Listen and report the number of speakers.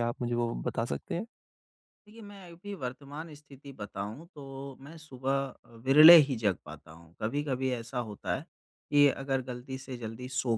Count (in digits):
2